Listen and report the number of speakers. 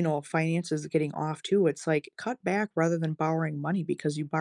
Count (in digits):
1